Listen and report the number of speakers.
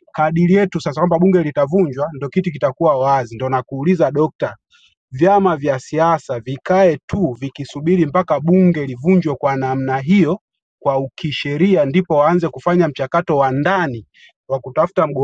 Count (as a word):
one